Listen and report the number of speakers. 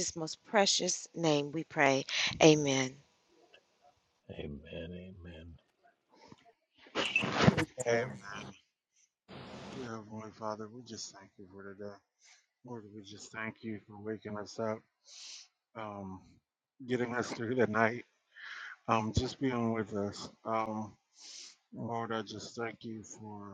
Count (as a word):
three